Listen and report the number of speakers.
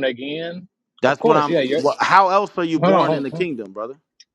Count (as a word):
two